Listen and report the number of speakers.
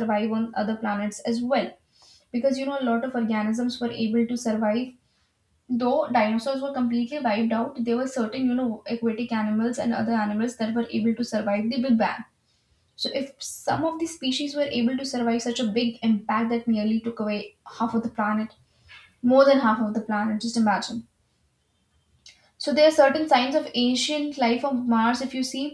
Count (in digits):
1